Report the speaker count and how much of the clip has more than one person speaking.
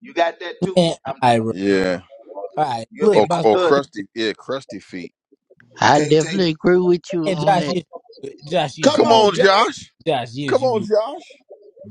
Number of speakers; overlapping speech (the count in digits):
4, about 30%